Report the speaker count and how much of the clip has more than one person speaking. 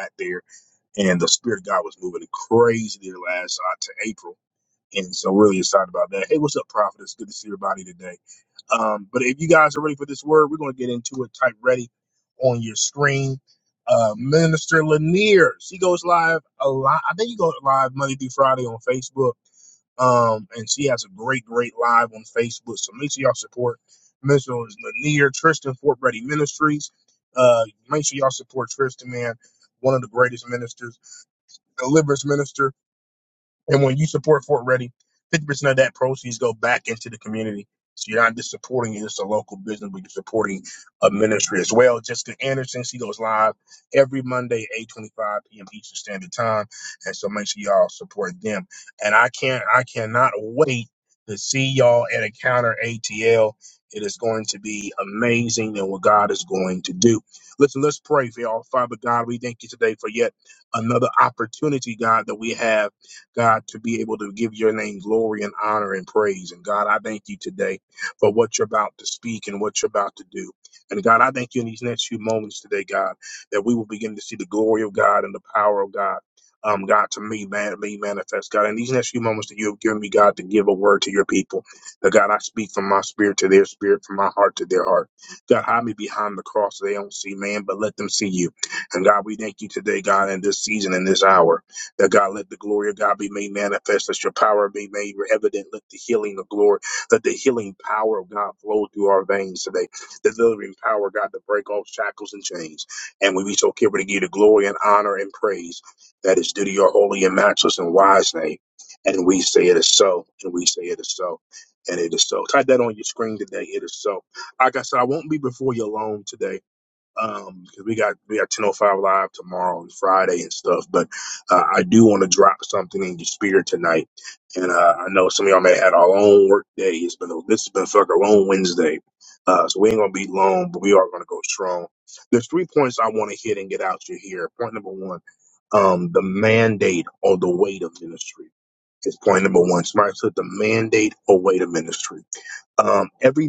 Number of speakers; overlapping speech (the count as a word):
one, no overlap